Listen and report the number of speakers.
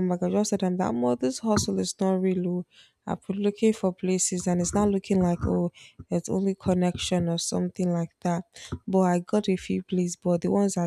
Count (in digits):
1